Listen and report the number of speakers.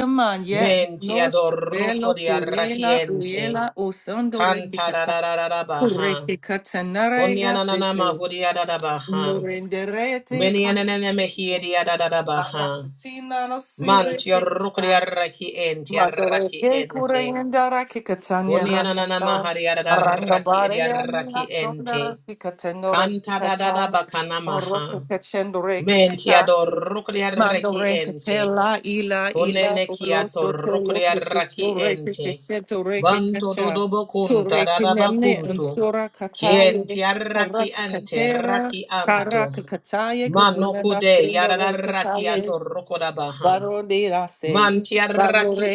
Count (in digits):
2